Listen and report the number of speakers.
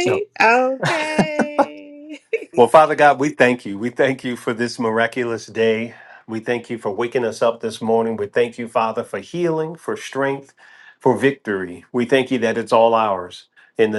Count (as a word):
two